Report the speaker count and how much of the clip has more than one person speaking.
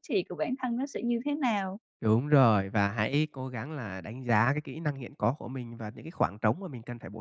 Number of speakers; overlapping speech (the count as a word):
two, no overlap